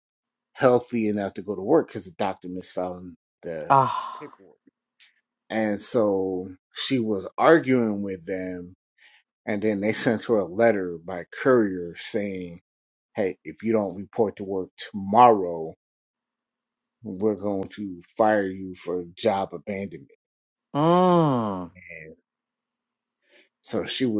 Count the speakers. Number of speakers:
2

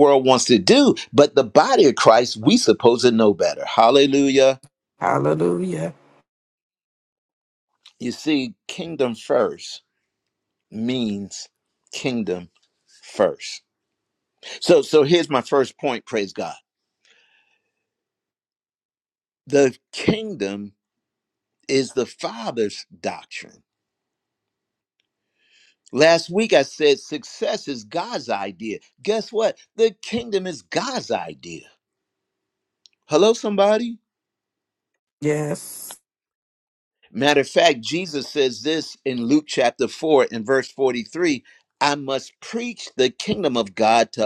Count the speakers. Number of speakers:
2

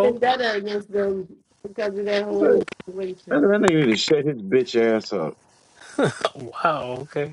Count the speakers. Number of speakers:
3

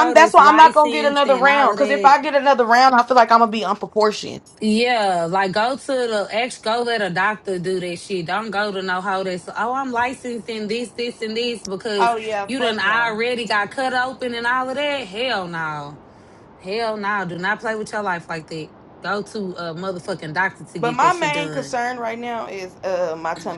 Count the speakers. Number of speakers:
2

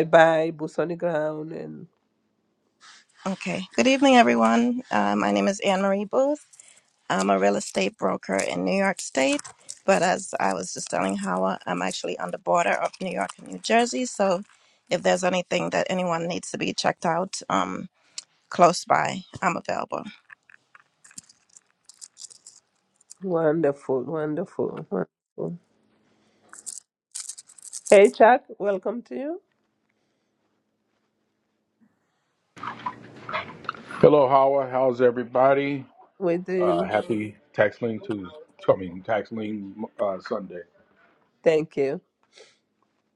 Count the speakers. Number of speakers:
3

